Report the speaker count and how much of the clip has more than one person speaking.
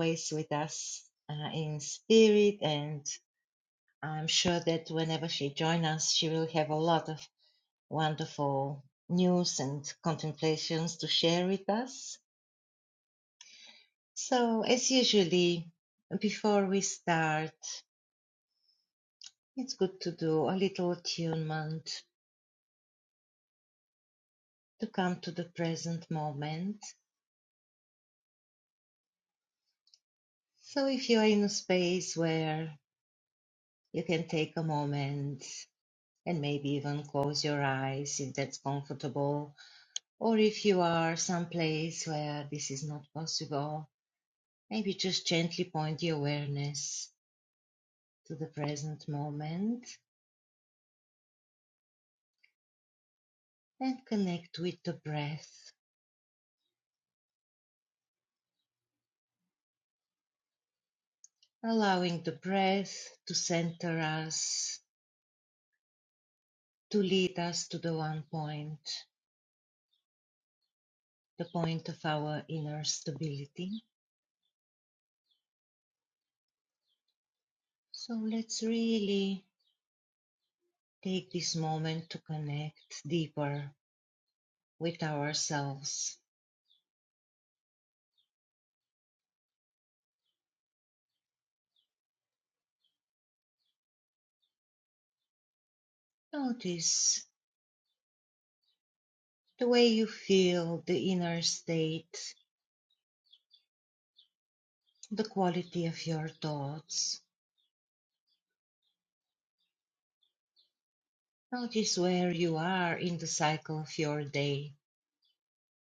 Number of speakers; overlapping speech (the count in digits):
1, no overlap